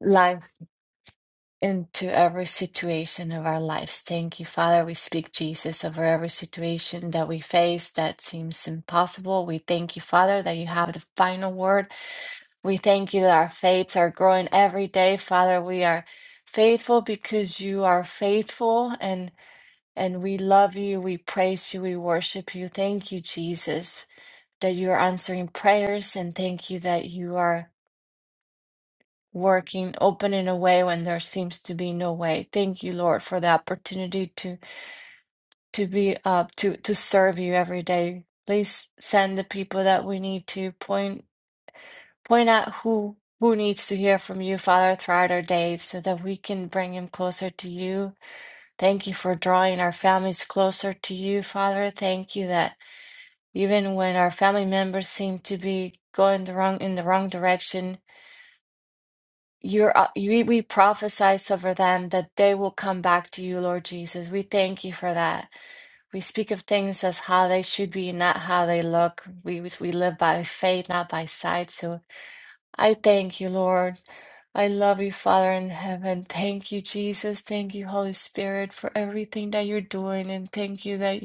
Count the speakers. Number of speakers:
1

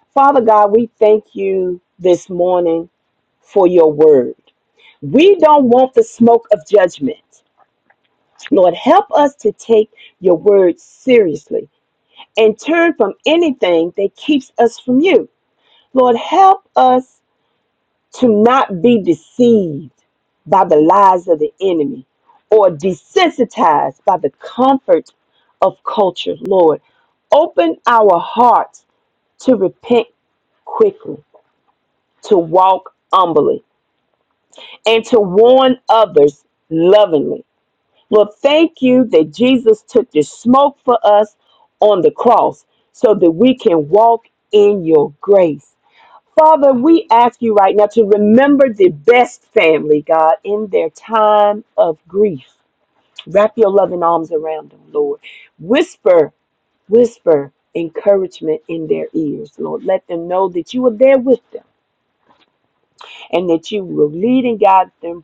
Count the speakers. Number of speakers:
1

